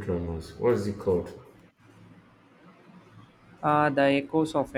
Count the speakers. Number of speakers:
two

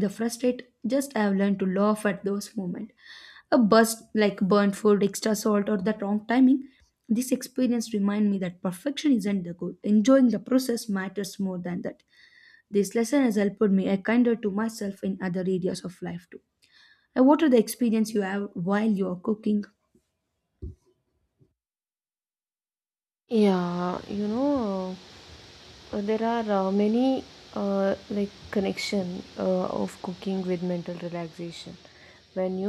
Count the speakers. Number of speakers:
two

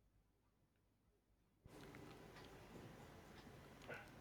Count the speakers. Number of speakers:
zero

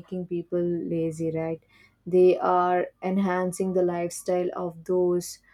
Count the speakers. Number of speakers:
one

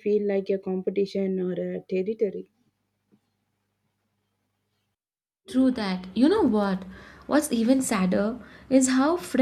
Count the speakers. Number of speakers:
two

